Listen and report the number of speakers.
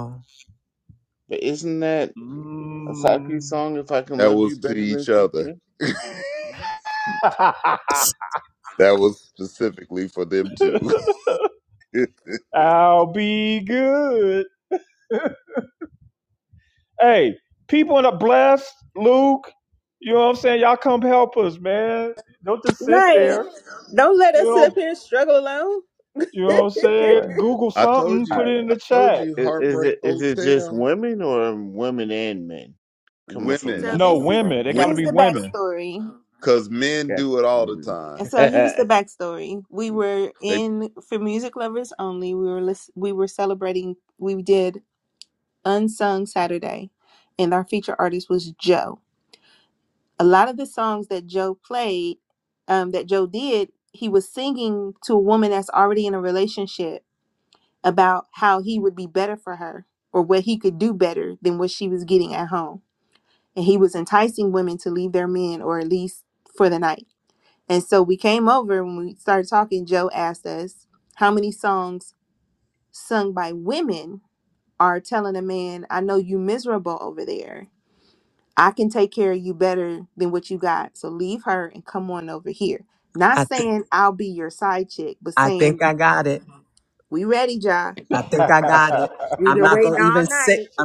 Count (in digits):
5